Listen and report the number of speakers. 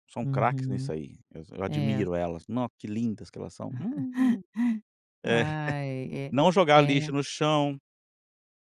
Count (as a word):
two